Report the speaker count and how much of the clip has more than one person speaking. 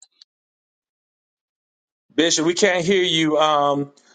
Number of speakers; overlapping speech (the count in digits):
1, no overlap